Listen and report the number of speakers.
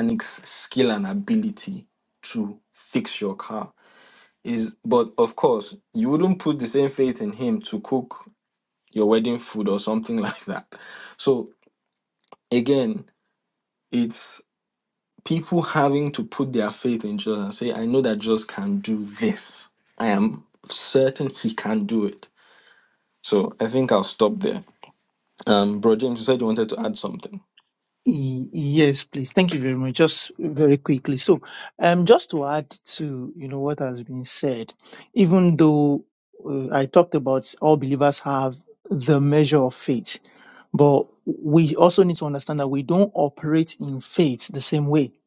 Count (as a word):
two